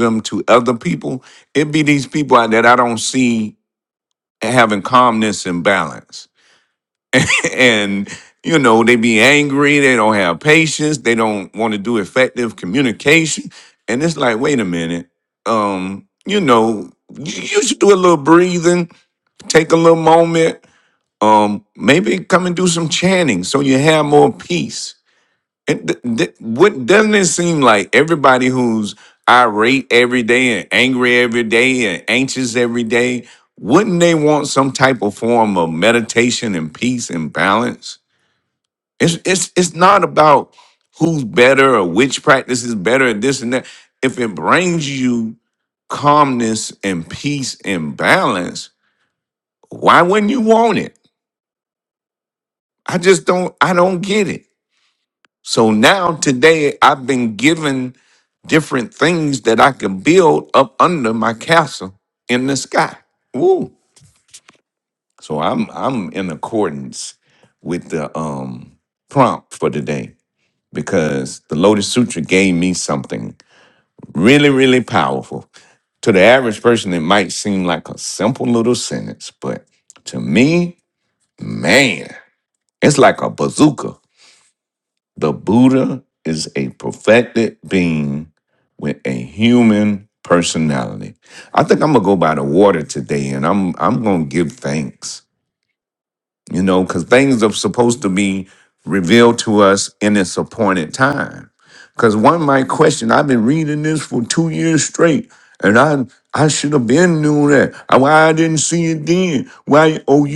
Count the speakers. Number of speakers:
one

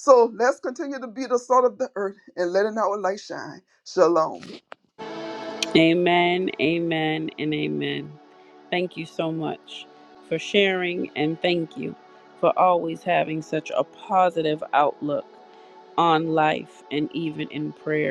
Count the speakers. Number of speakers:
two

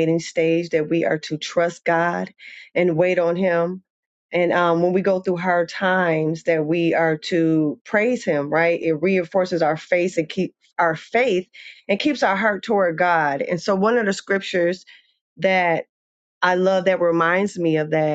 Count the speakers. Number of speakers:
one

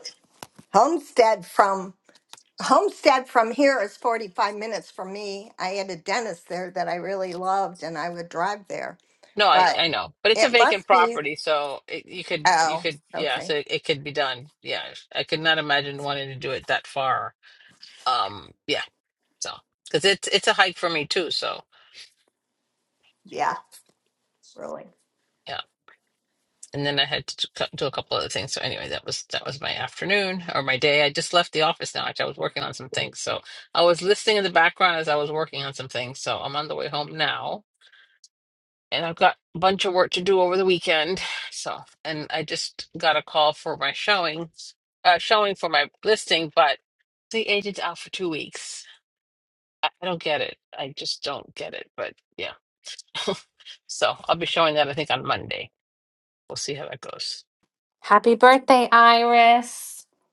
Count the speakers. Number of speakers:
three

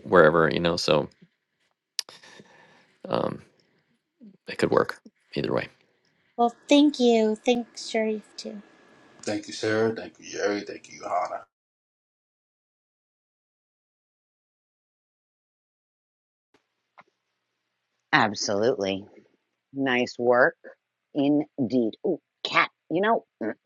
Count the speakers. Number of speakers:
four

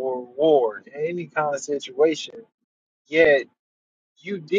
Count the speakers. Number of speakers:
one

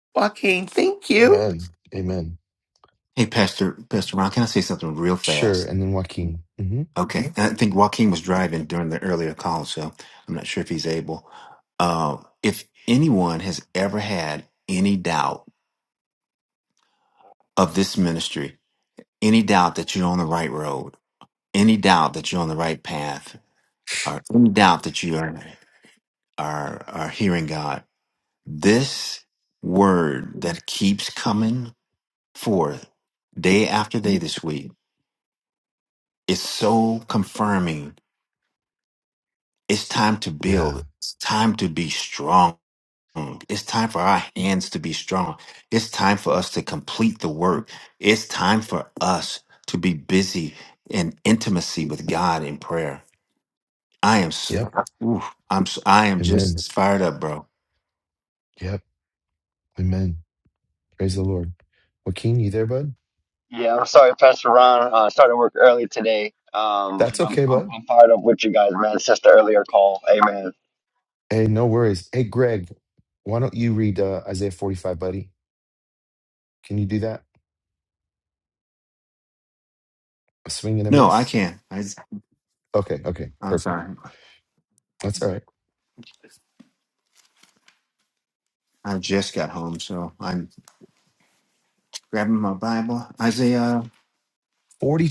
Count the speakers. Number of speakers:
four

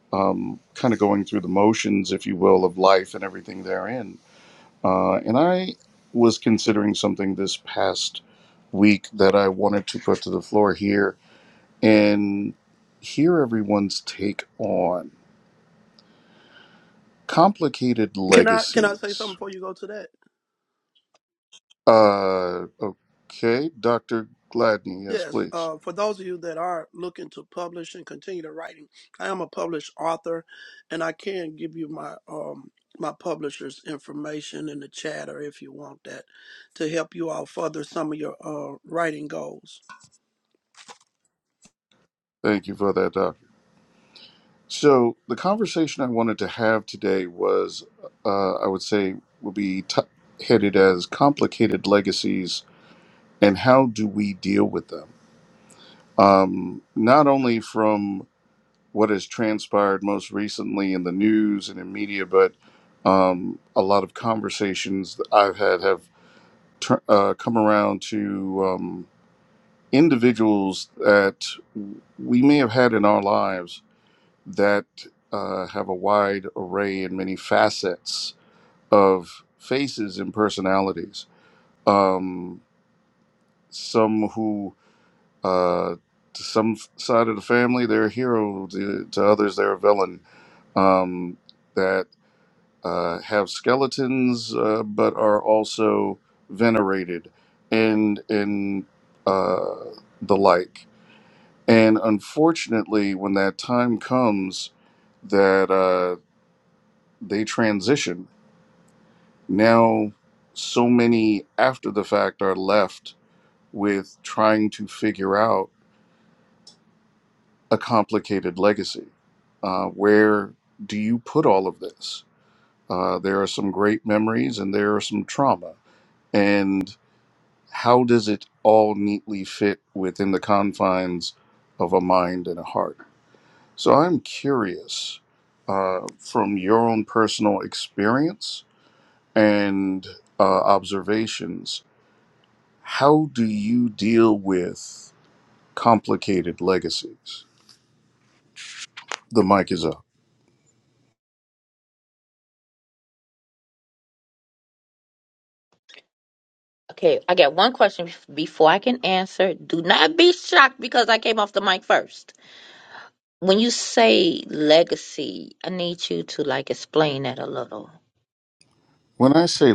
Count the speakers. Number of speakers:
three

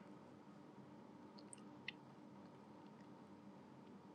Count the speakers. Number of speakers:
zero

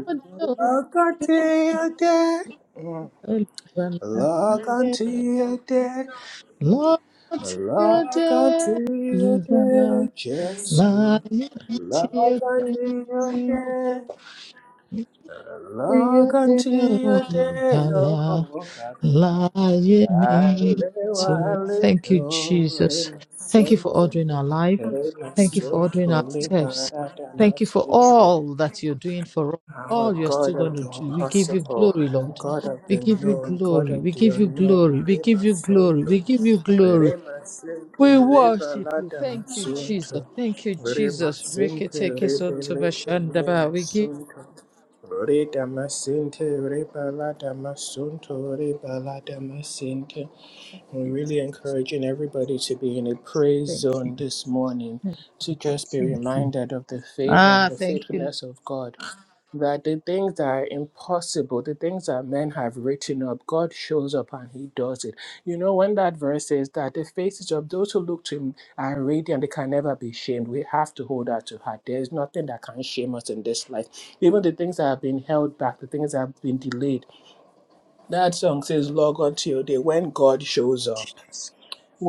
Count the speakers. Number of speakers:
two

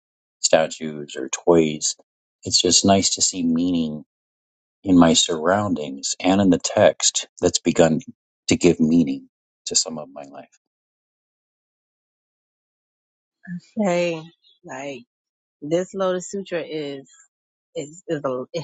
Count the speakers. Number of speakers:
two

